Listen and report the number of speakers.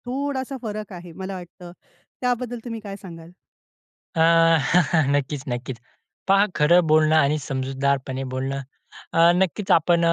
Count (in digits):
2